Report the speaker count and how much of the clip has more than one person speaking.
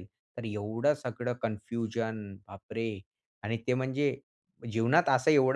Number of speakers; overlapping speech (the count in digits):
1, no overlap